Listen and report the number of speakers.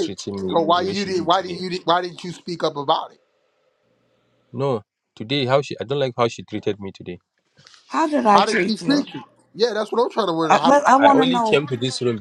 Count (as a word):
three